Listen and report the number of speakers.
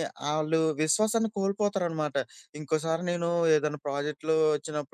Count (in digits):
1